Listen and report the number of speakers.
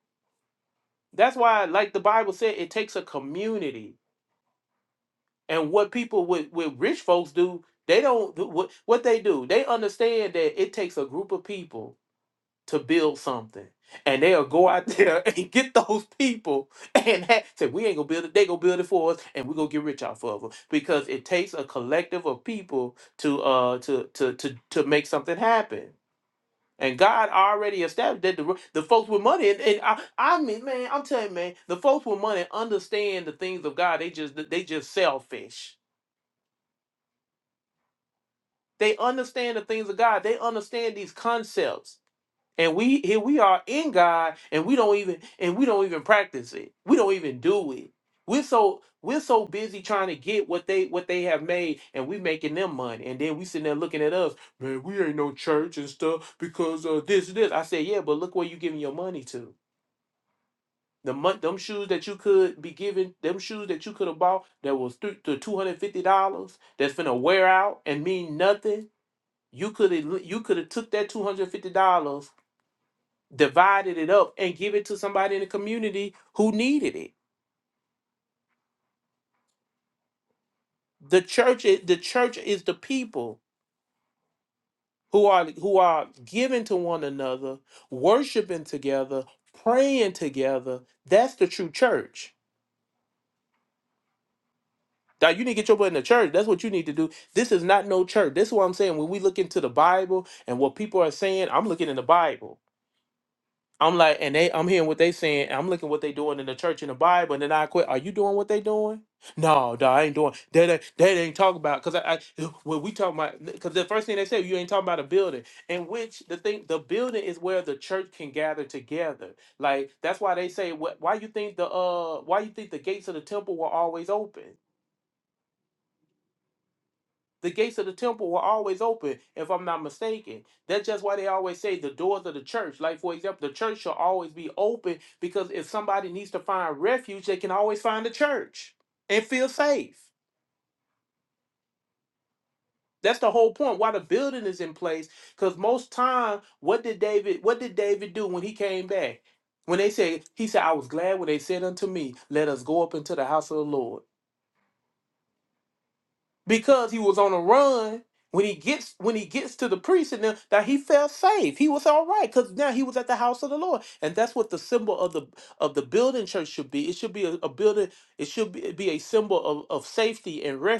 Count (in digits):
1